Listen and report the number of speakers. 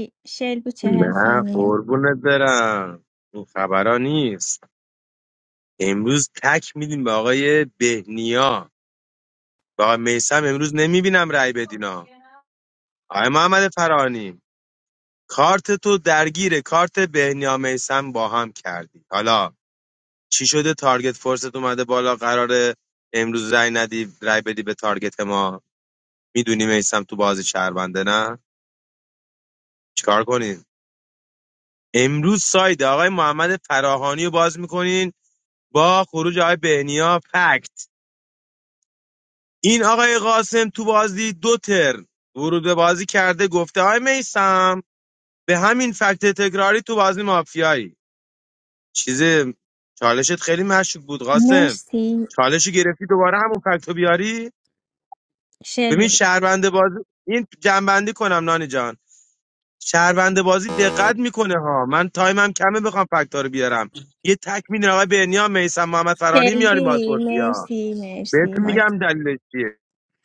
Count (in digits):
2